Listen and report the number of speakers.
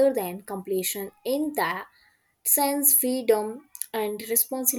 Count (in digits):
1